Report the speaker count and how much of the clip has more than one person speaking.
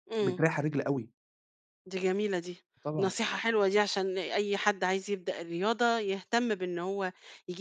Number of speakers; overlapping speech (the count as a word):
two, about 4%